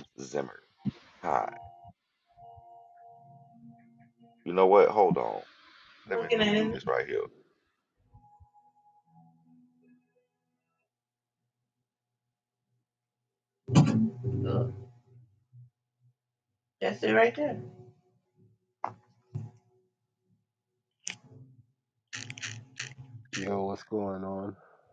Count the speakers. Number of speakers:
three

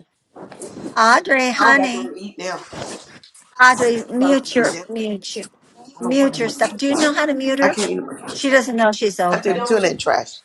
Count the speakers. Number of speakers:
two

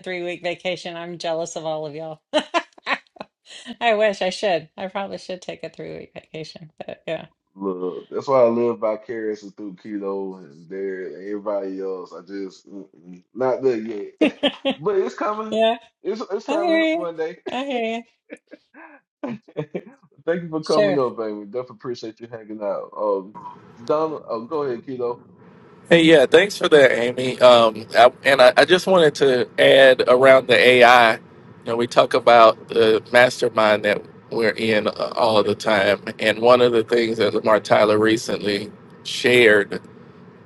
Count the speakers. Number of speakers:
three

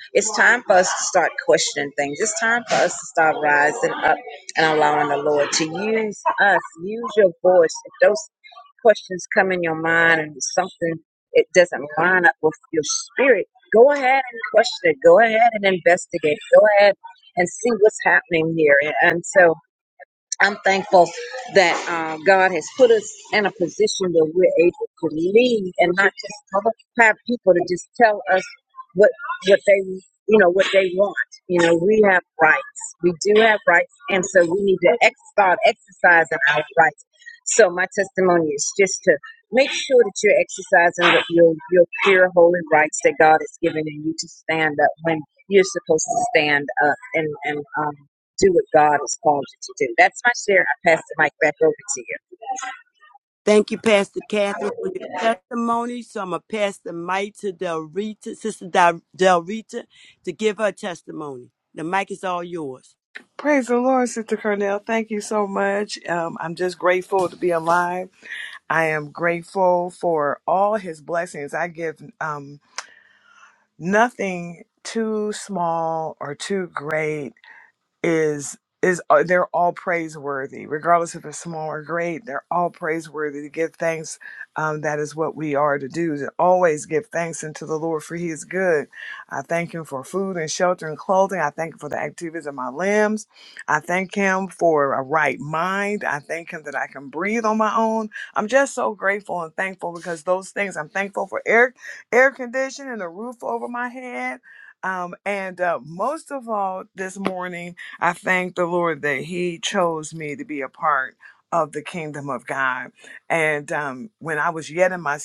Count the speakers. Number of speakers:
three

